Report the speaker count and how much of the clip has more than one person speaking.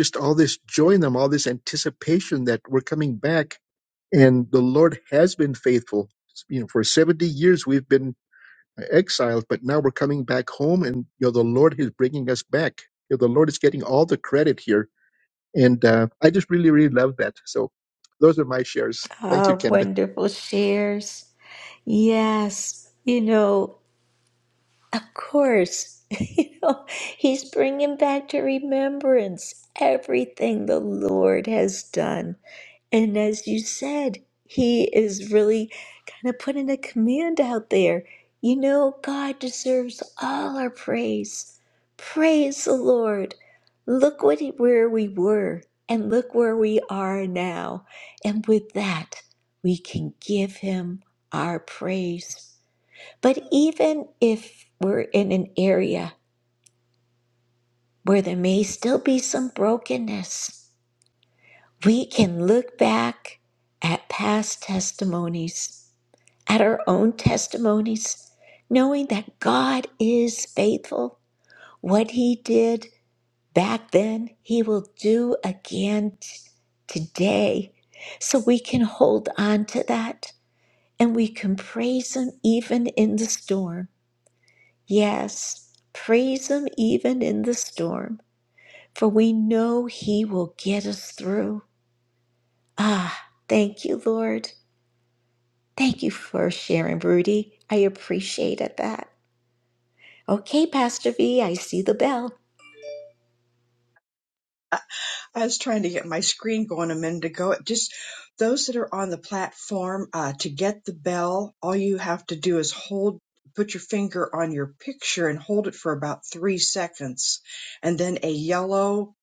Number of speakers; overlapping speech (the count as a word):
three, about 1%